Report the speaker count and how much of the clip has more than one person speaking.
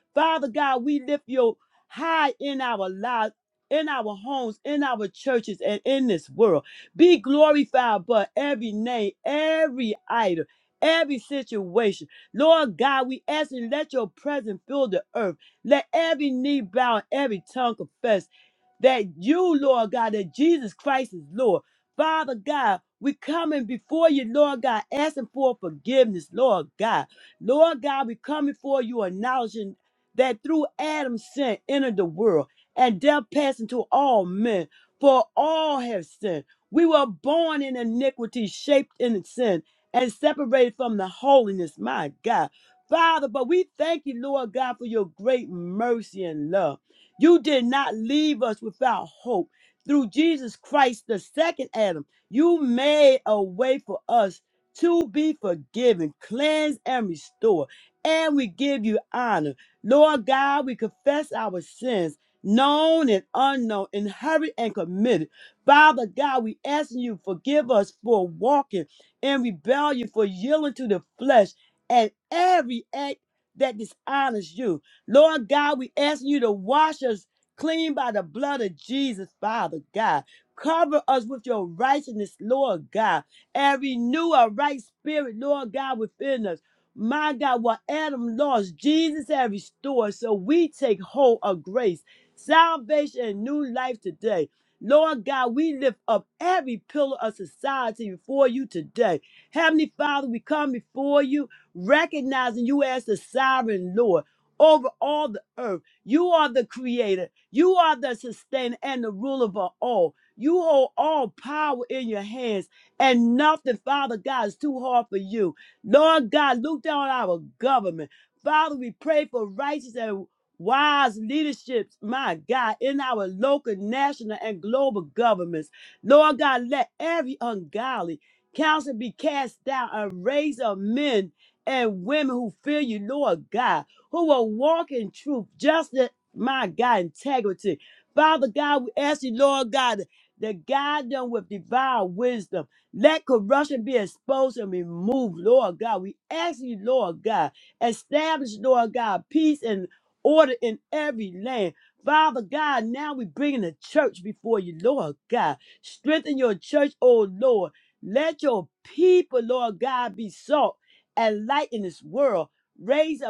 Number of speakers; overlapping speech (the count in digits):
1, no overlap